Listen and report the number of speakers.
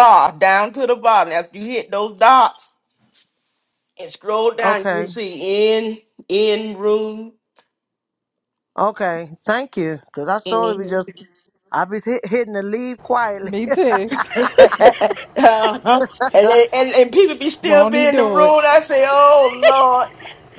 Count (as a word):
three